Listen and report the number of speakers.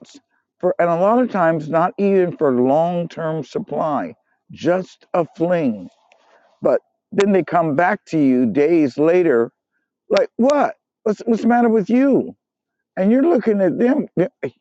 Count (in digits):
1